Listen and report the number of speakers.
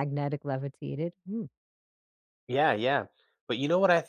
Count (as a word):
two